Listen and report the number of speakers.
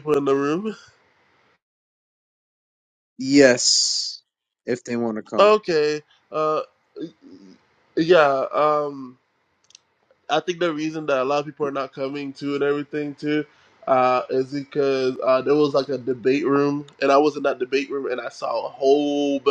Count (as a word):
two